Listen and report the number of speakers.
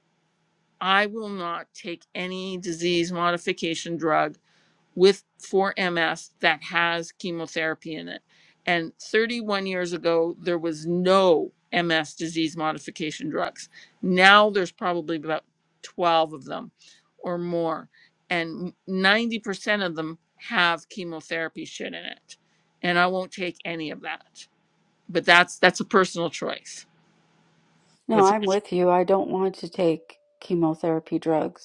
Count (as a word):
two